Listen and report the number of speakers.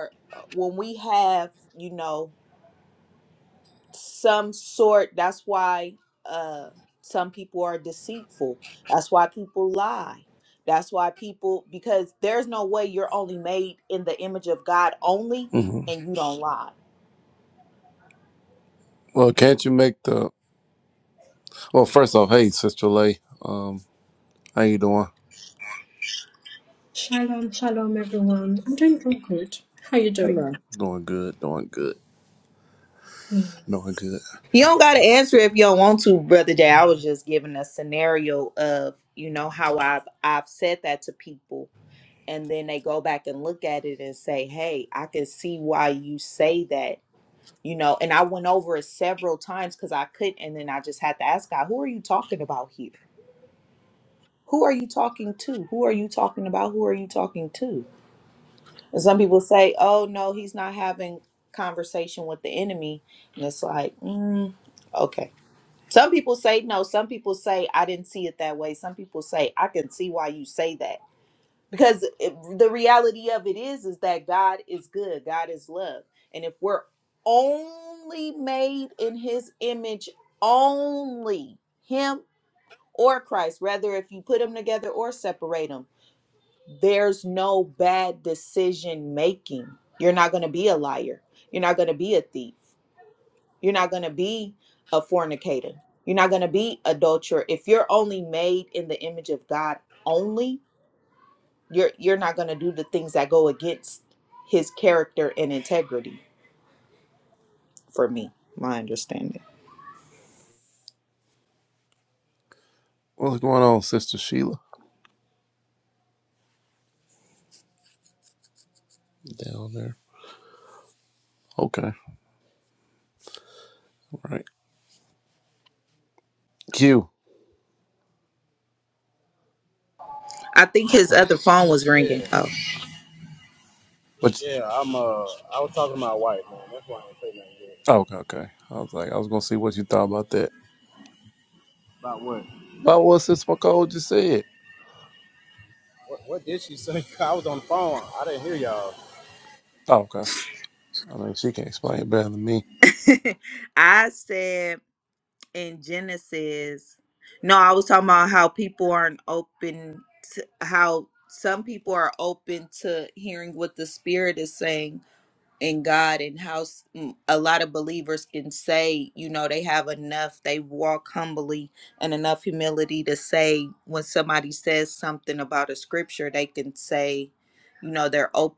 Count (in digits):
4